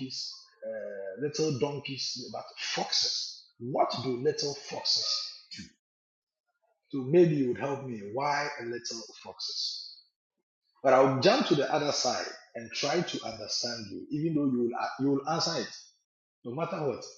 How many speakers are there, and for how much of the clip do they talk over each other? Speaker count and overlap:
one, no overlap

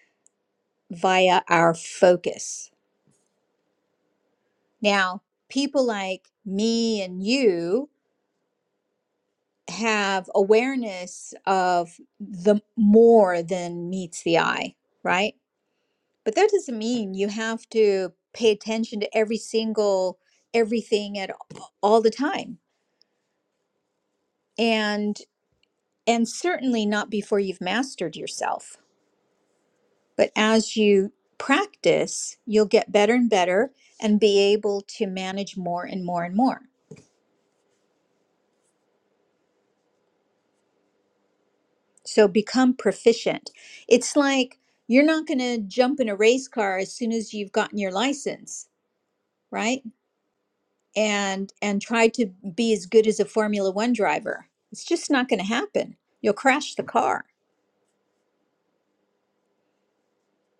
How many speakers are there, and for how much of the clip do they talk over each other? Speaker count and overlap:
one, no overlap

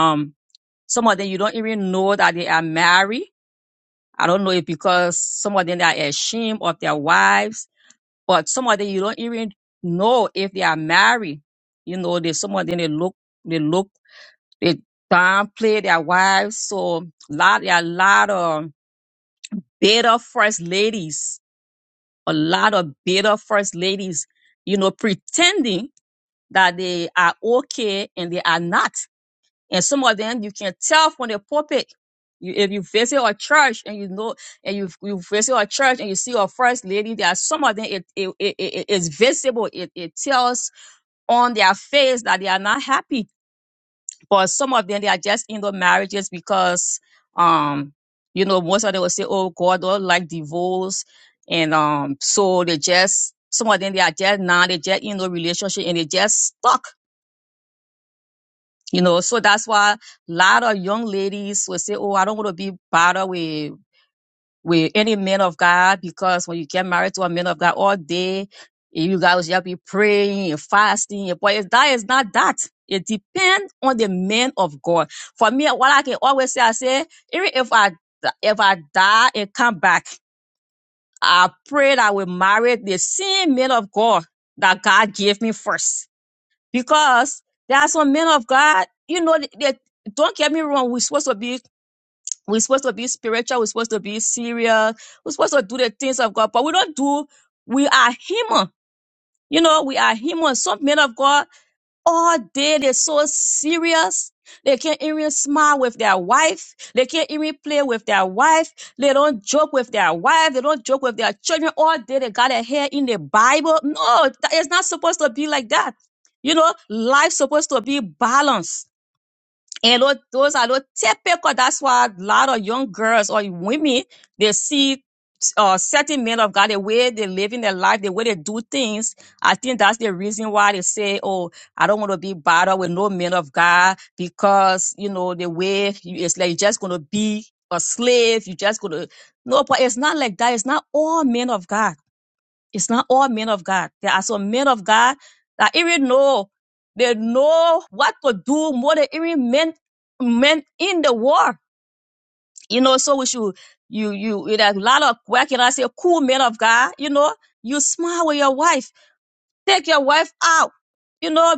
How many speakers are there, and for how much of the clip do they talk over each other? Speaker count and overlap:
one, no overlap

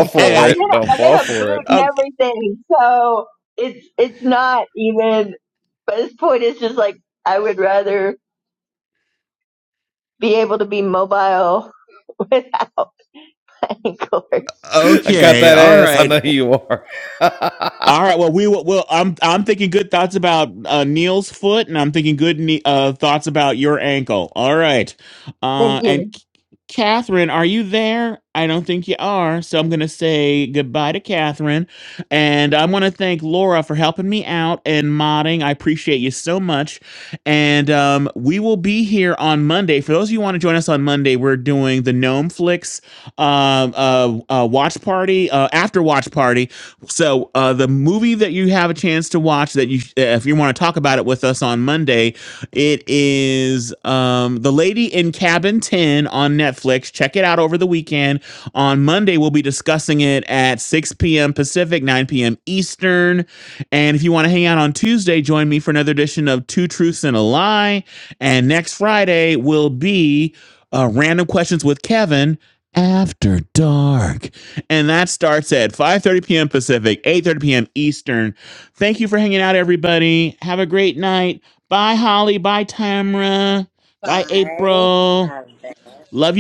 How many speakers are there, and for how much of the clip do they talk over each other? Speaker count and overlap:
four, about 5%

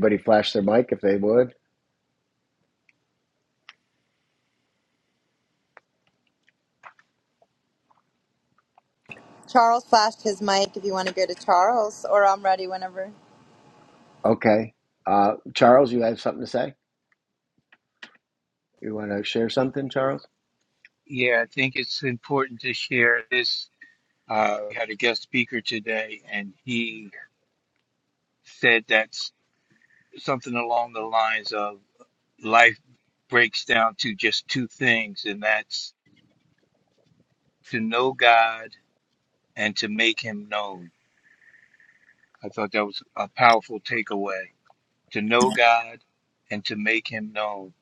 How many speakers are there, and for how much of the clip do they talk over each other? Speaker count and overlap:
three, no overlap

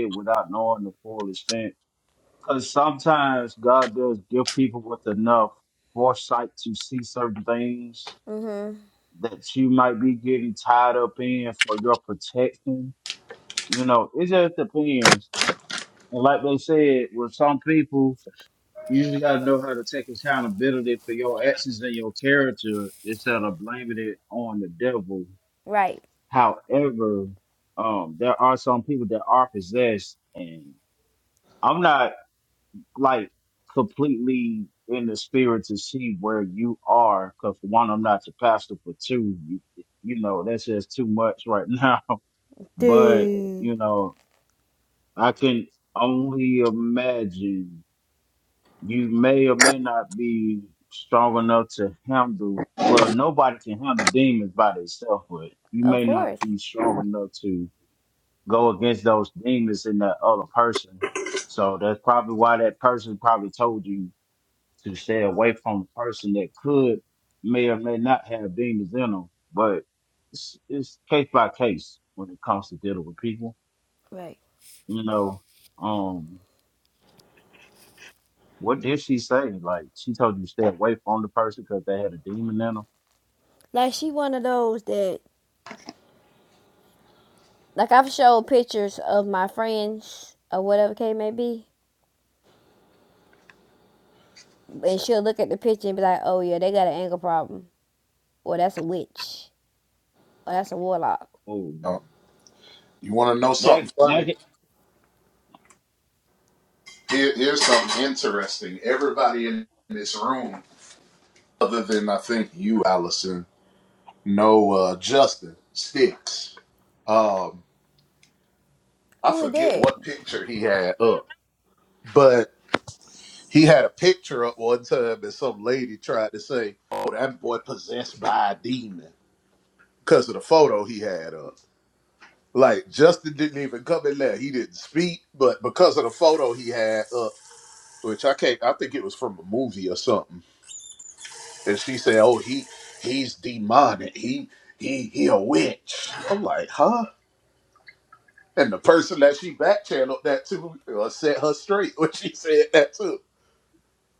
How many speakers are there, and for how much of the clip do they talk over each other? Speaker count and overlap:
three, about 2%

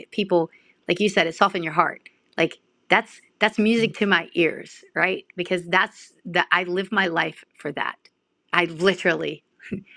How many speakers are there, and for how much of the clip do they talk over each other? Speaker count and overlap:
one, no overlap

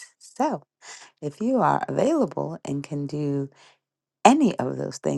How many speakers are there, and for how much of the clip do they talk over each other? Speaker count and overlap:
one, no overlap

